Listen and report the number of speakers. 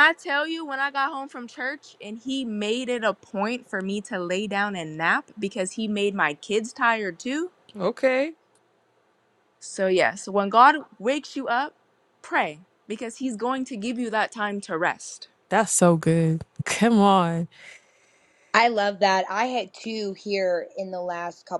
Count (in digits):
3